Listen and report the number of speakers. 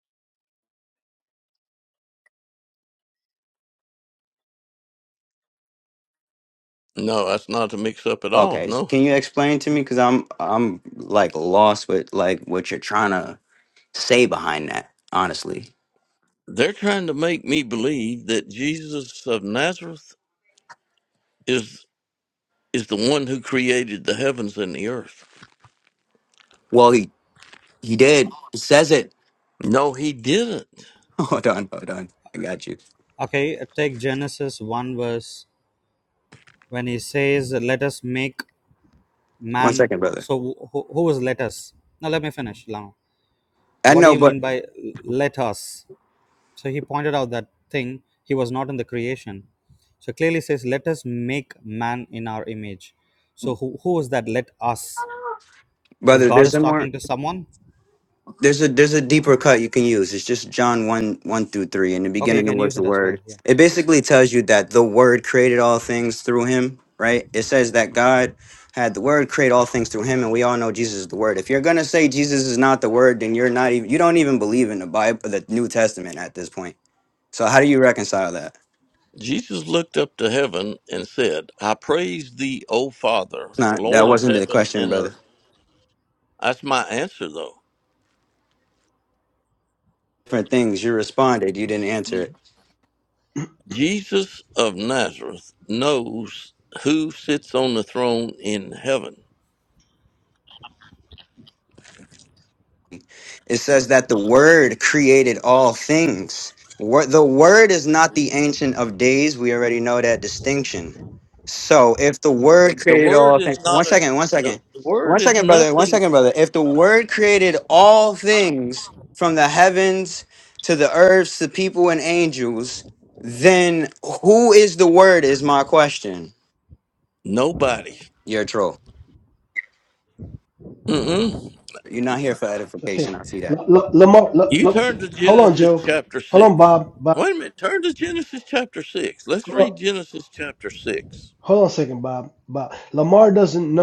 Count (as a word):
four